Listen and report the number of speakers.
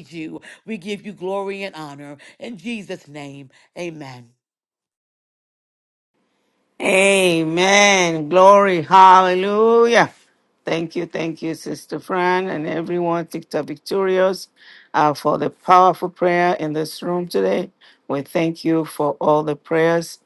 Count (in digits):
2